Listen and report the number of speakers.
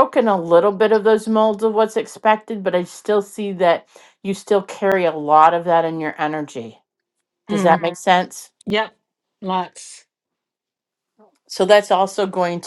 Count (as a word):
two